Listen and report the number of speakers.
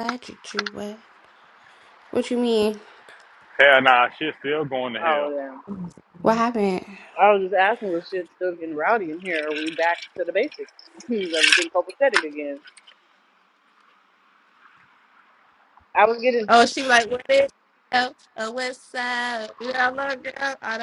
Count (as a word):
four